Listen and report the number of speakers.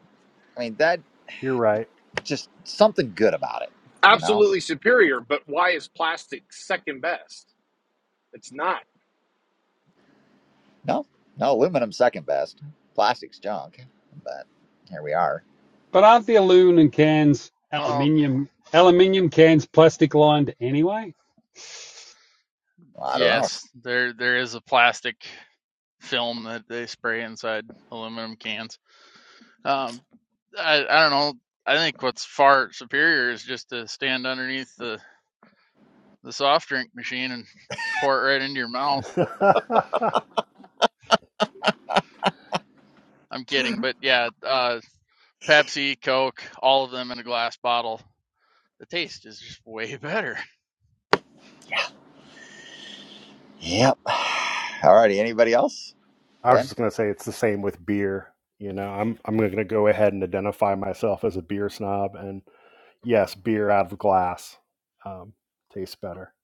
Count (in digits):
5